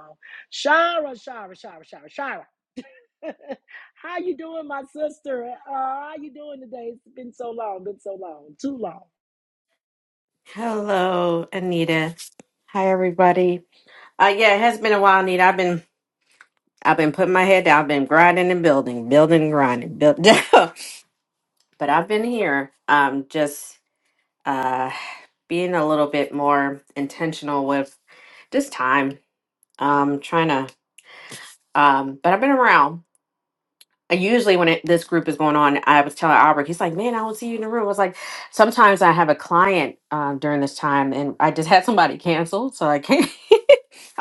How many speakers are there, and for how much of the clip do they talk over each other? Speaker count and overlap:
two, no overlap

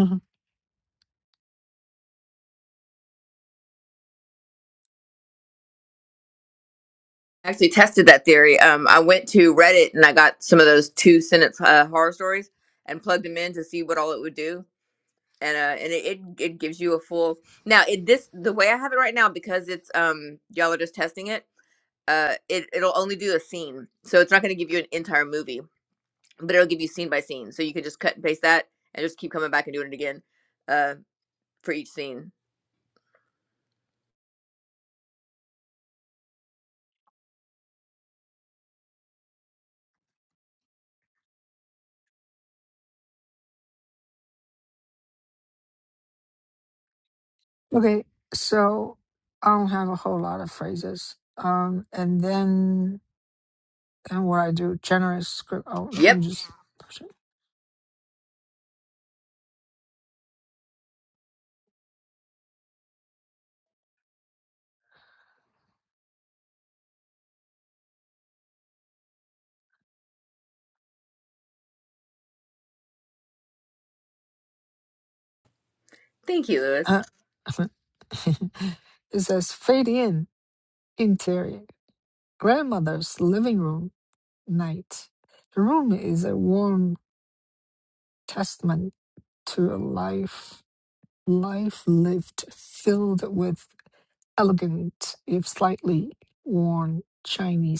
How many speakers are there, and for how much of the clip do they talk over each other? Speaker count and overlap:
two, under 1%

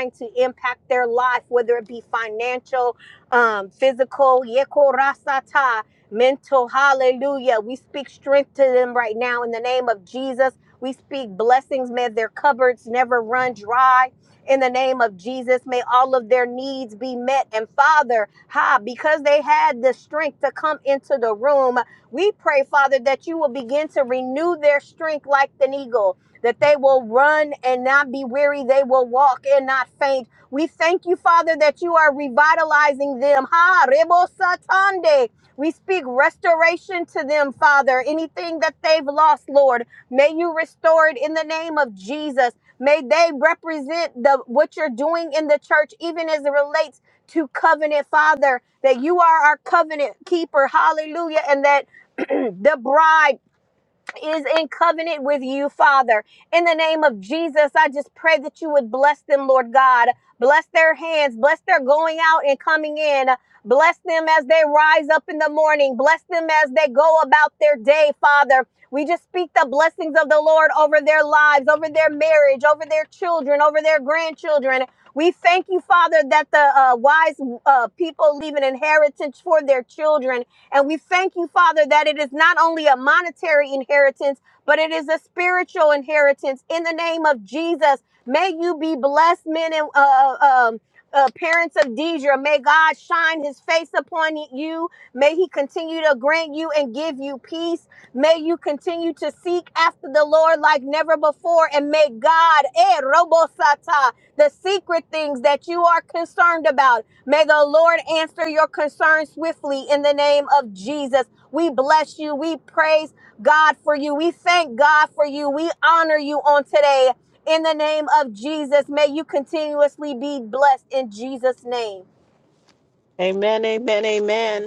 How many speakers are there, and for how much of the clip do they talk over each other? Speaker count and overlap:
two, no overlap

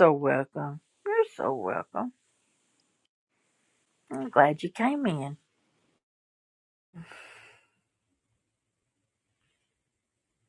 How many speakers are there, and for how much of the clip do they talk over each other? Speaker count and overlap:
one, no overlap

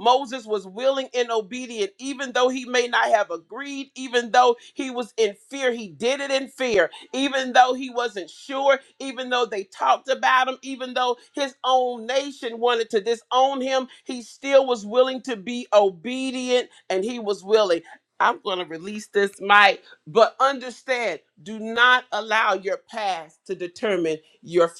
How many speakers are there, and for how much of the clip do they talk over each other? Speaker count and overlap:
one, no overlap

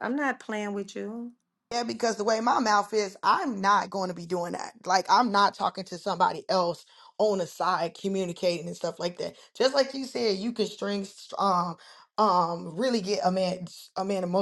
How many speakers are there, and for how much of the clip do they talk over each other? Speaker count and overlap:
two, no overlap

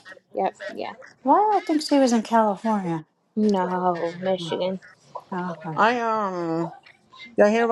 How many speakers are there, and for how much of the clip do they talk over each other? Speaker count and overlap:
three, about 2%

